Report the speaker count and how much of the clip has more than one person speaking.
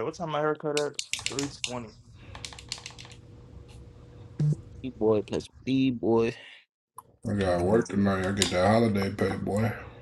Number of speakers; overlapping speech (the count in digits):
3, no overlap